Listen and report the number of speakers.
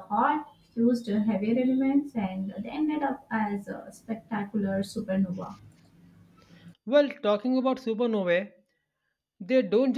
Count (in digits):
2